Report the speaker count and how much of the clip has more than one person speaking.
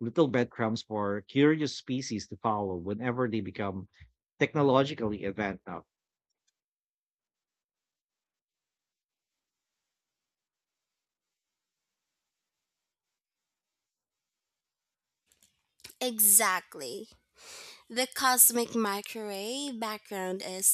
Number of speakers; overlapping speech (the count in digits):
2, no overlap